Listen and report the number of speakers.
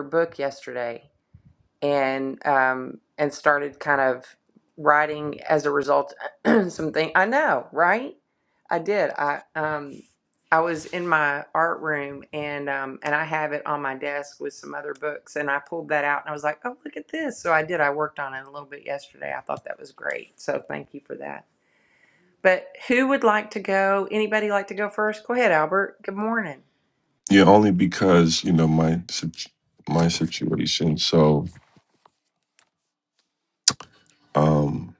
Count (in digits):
2